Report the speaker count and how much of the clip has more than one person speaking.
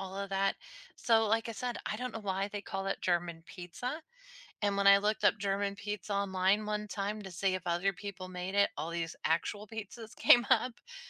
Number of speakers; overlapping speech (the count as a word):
one, no overlap